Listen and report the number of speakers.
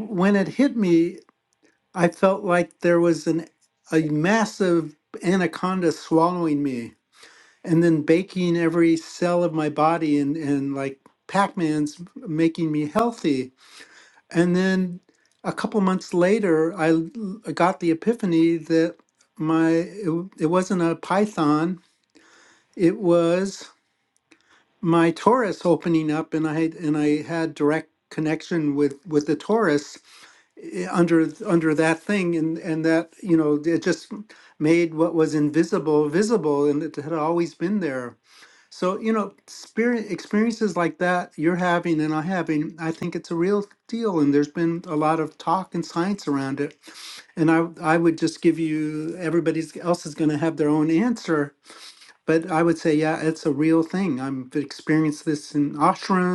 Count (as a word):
one